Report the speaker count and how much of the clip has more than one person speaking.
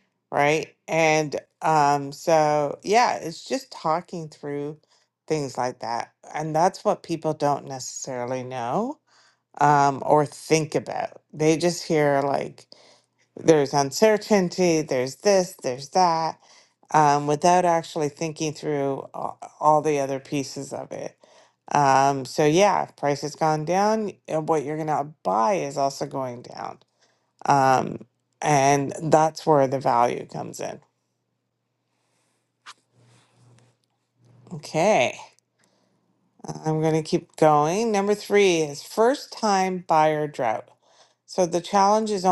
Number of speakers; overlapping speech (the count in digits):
1, no overlap